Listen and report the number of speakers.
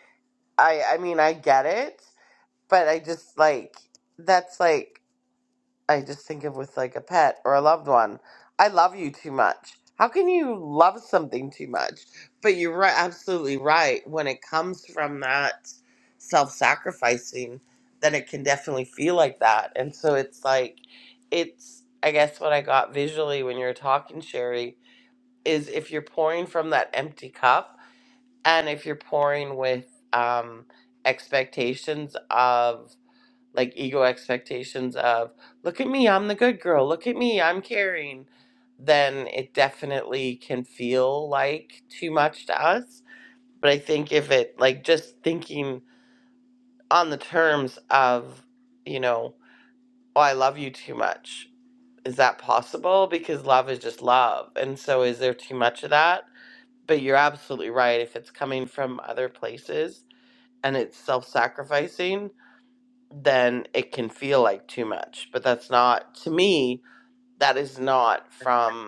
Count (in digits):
1